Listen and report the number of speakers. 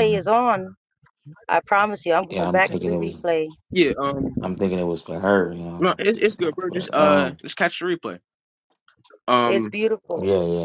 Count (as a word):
three